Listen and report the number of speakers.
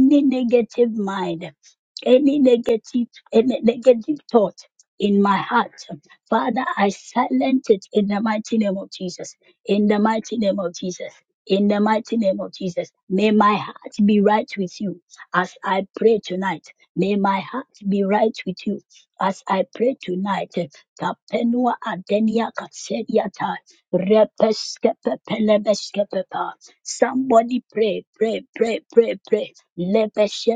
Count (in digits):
1